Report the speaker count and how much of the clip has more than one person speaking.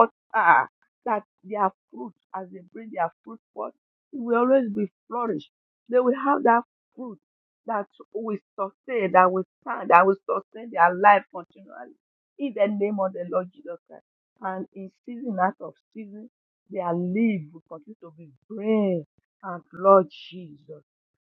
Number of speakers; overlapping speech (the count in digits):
1, no overlap